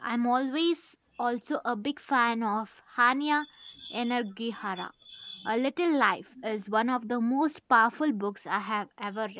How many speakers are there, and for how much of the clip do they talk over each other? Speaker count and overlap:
one, no overlap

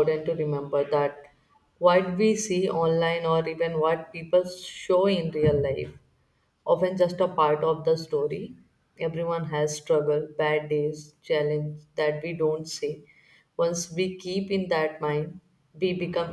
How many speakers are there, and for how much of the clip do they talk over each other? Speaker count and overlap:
one, no overlap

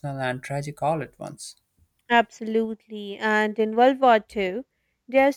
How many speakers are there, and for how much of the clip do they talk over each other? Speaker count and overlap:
two, no overlap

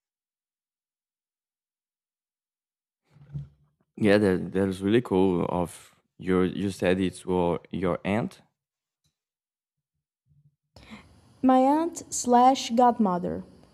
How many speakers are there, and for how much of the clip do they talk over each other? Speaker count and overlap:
two, no overlap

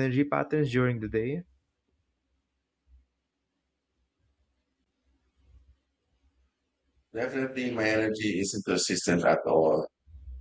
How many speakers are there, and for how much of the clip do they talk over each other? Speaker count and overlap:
two, no overlap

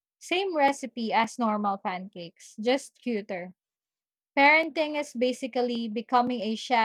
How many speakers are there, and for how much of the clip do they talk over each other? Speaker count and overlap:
one, no overlap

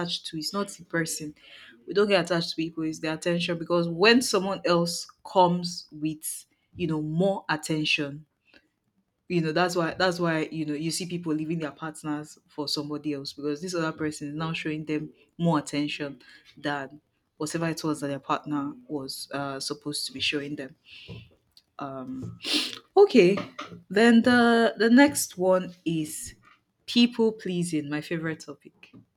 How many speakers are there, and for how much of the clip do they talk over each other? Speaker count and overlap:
one, no overlap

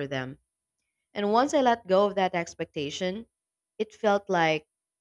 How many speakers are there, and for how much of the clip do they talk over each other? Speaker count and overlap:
one, no overlap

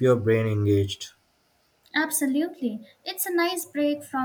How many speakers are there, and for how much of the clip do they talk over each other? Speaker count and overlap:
two, no overlap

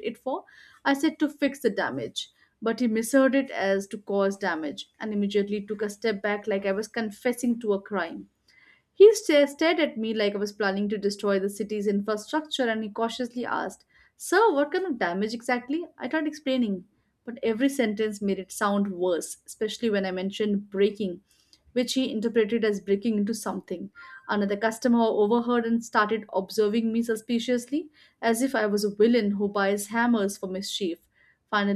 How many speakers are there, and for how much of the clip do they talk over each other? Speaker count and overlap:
one, no overlap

